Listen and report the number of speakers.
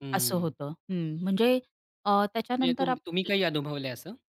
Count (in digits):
2